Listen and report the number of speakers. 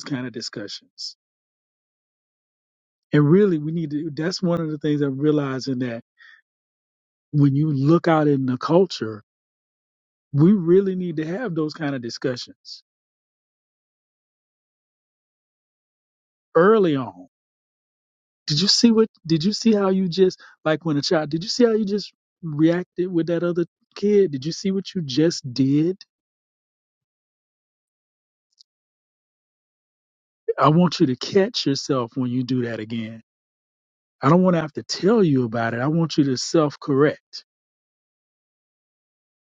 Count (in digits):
1